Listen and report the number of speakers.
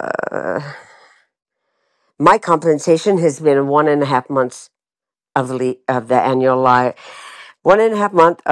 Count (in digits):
1